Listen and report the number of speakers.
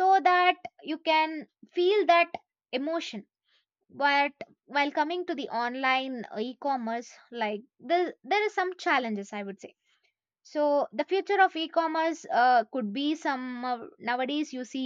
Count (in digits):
1